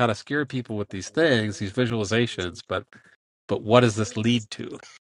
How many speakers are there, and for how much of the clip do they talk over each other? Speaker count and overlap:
one, no overlap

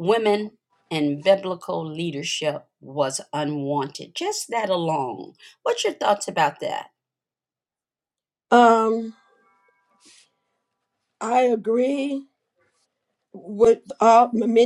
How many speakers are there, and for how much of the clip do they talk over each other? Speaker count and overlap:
two, no overlap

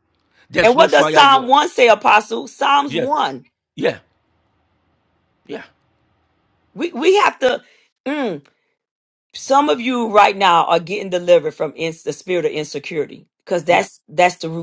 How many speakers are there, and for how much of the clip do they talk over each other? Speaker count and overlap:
two, about 8%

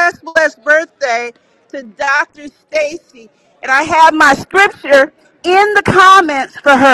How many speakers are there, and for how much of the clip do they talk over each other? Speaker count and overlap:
one, no overlap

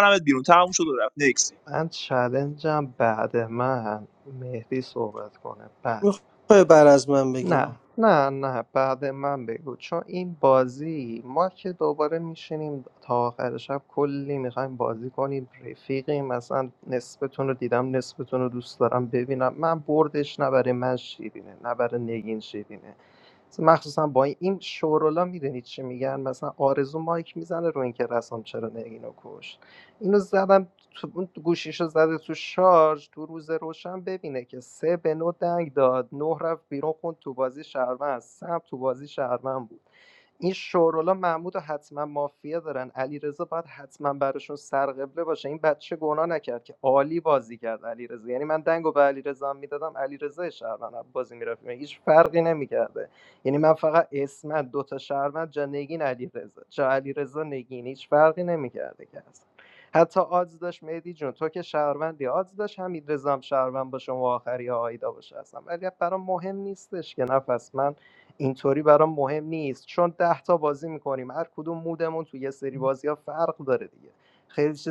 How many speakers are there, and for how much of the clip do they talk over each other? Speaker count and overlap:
three, under 1%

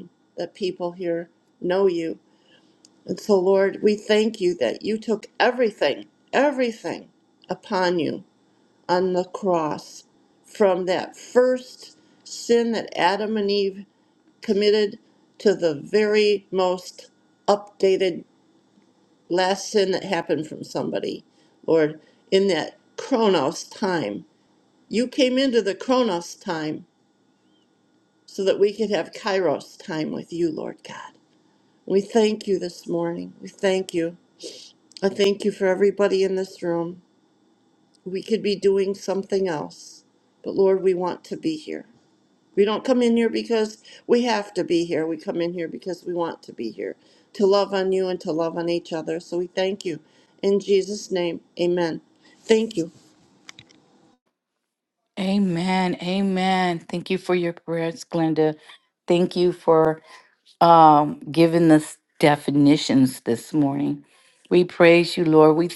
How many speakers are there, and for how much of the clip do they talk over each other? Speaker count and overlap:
two, no overlap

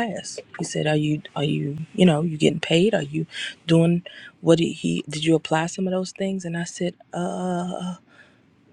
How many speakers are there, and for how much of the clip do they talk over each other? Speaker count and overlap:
one, no overlap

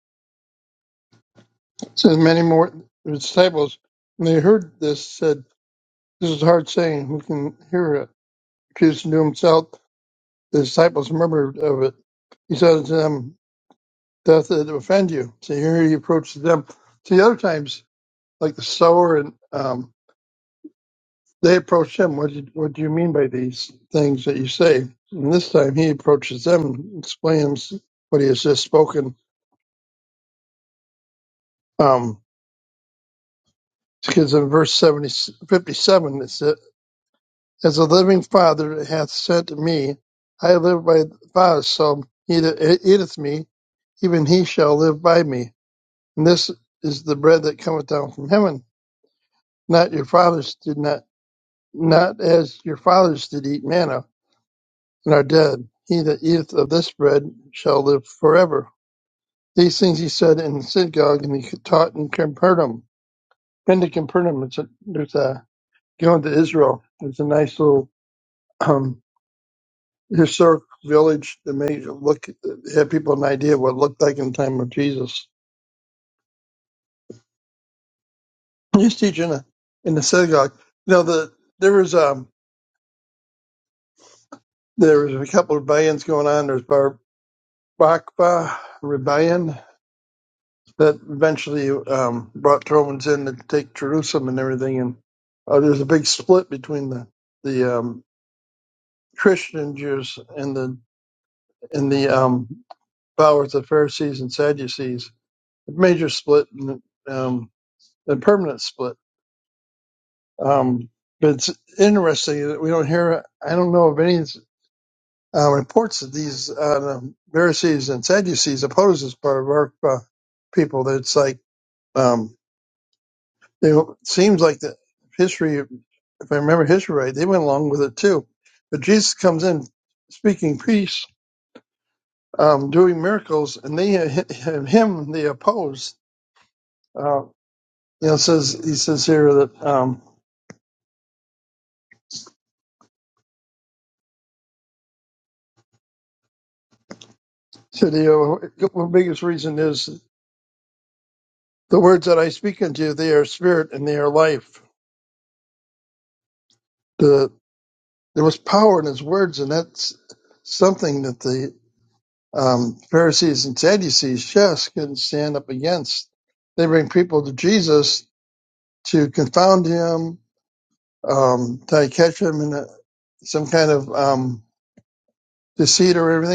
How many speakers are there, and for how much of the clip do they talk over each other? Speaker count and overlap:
one, no overlap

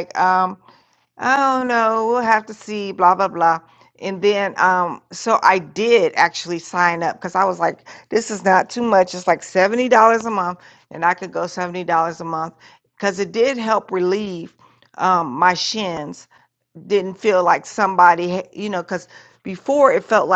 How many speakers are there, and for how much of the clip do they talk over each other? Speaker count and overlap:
one, no overlap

